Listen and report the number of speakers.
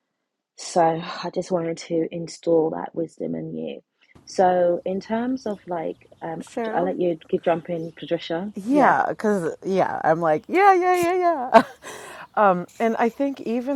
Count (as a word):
two